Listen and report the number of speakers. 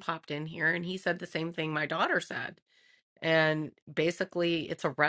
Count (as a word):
one